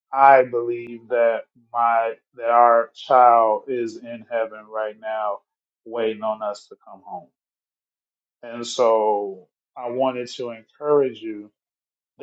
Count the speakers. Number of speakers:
1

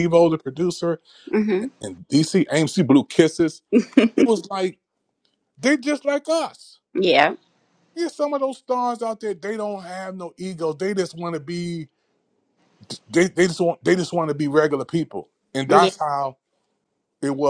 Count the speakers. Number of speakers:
2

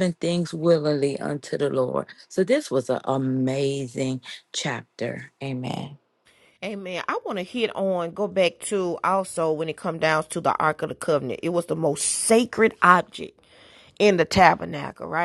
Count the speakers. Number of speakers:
2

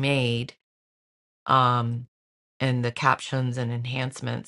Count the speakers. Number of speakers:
1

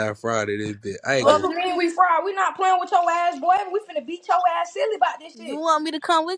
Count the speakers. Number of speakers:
3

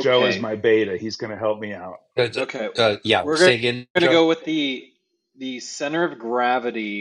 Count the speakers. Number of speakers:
3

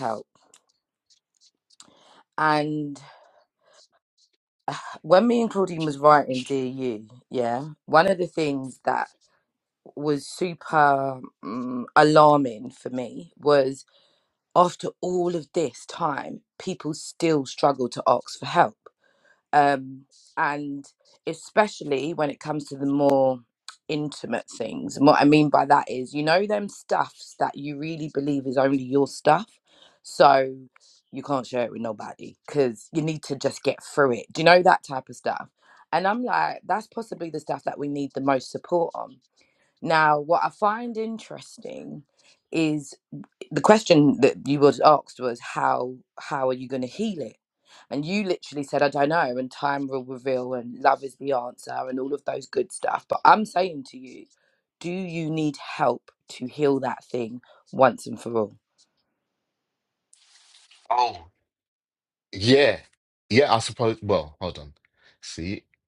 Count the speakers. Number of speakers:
2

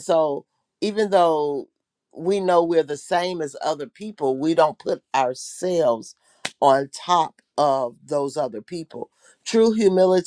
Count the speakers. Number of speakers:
1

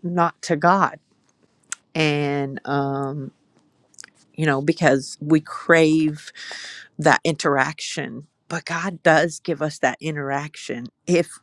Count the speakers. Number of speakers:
1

